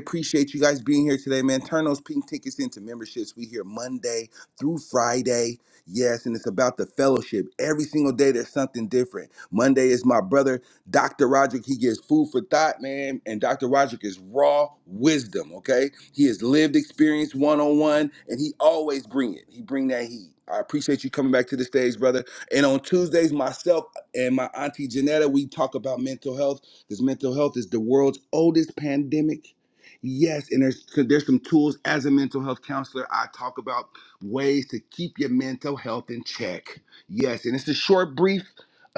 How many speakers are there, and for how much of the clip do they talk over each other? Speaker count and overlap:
1, no overlap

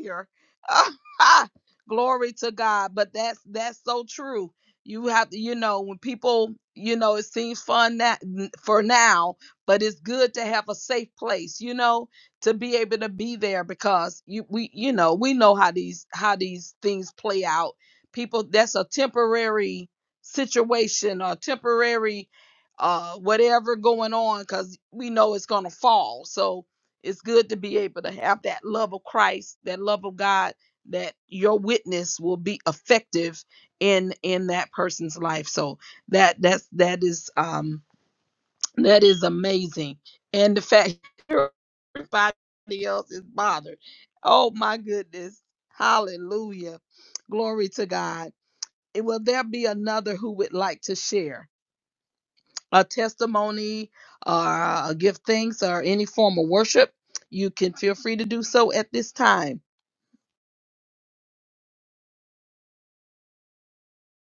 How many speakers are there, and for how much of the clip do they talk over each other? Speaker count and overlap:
1, no overlap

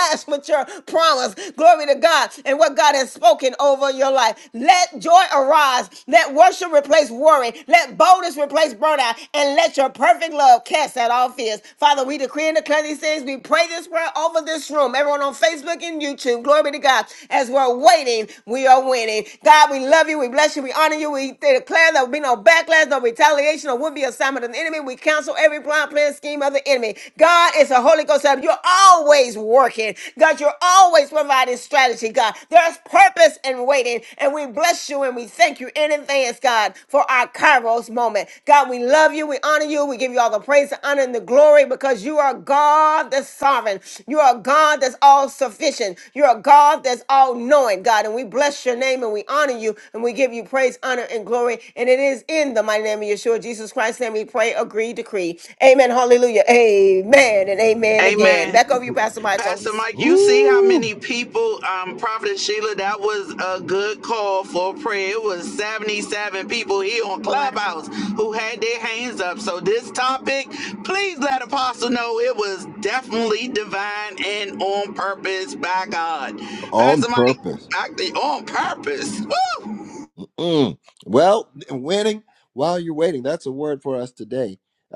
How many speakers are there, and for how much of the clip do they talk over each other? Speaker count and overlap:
3, about 2%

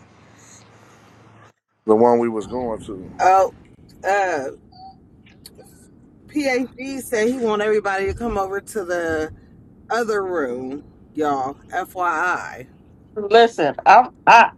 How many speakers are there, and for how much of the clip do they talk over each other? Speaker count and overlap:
3, no overlap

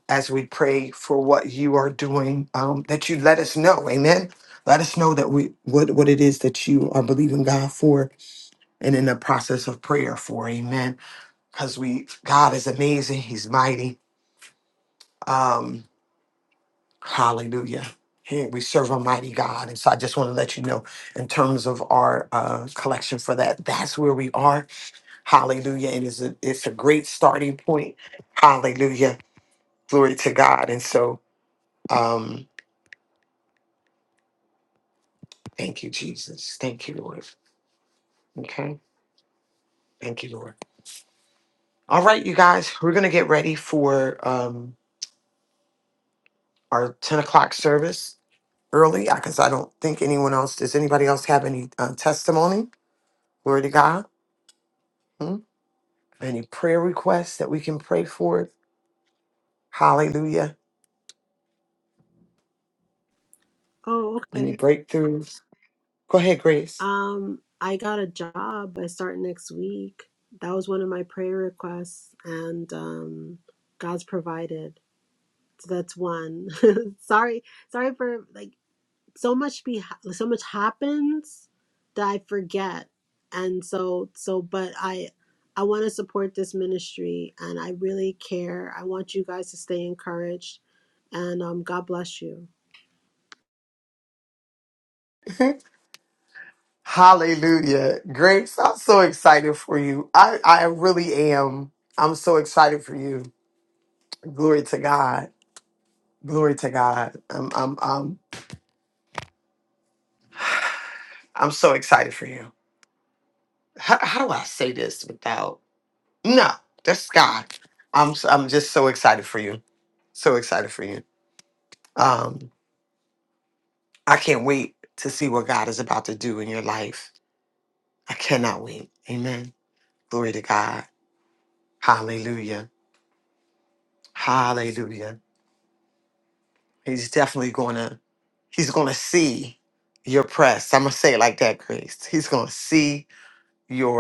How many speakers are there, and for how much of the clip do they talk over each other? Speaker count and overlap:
2, under 1%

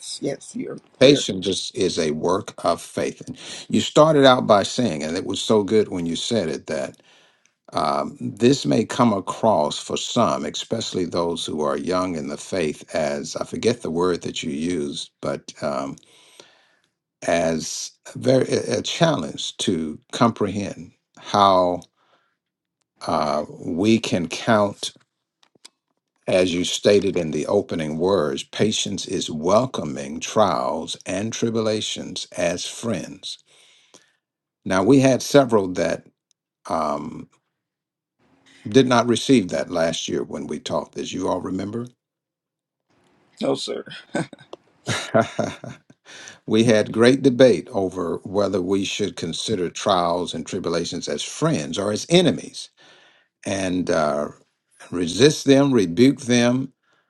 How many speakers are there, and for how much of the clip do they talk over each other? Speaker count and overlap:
2, under 1%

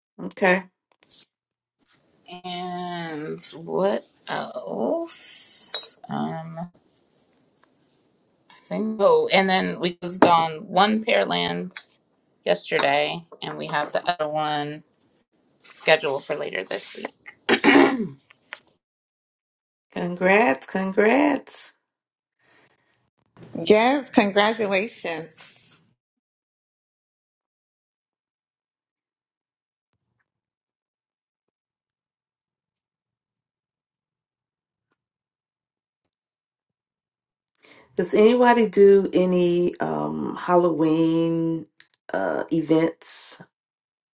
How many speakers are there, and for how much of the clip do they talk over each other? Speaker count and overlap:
3, no overlap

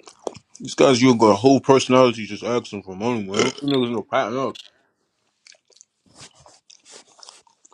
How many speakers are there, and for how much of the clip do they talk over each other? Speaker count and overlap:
1, no overlap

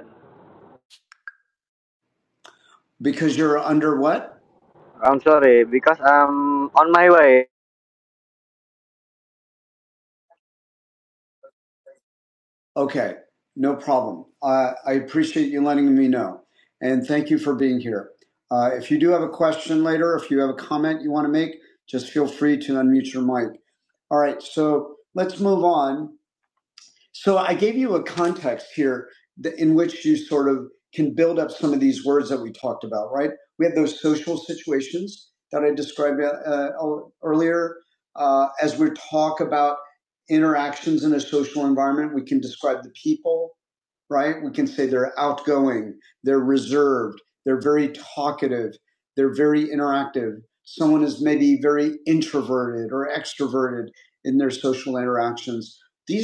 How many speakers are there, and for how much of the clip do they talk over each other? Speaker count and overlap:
2, no overlap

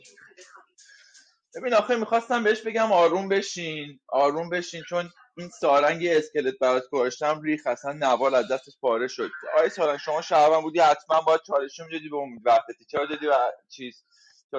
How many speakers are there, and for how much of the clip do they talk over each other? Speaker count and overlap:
1, no overlap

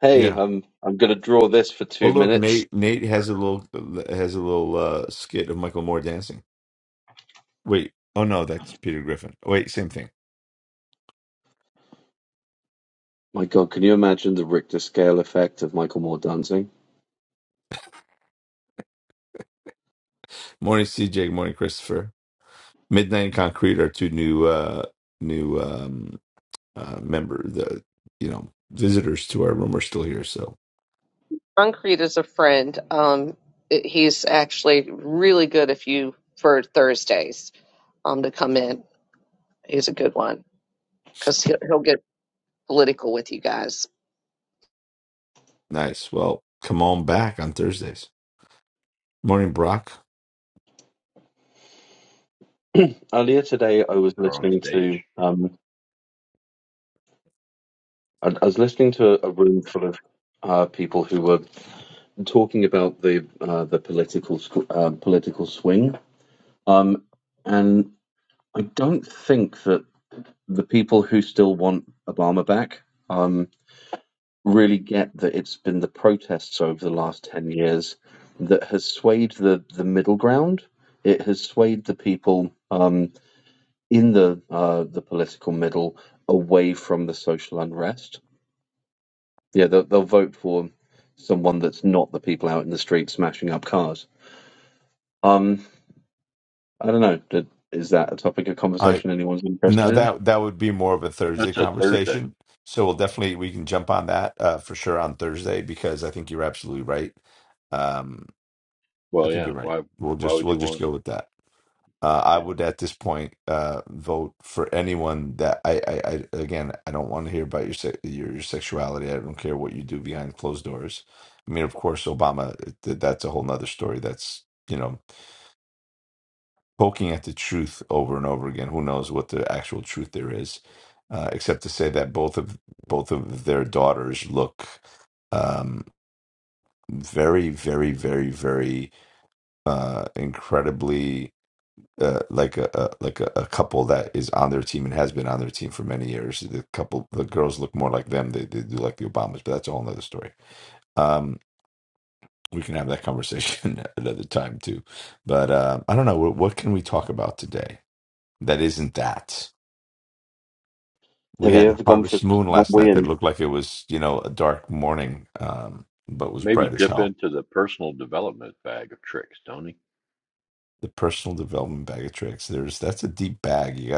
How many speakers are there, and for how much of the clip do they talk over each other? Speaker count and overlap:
4, about 4%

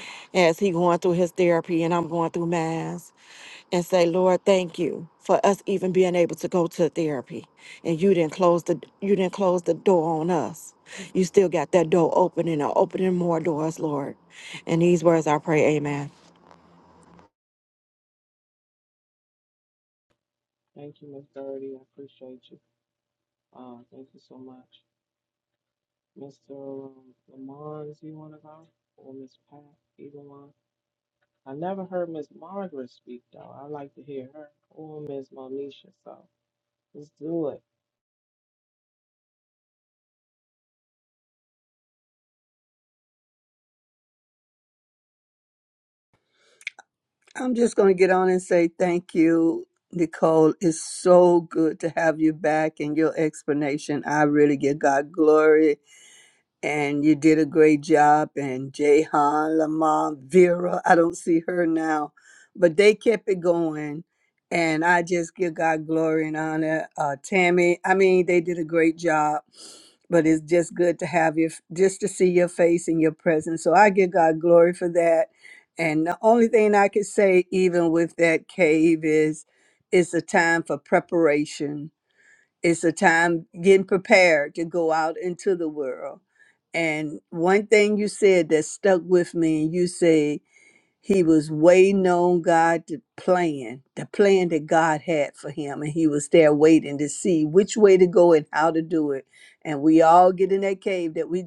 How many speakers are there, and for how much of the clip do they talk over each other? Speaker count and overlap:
3, no overlap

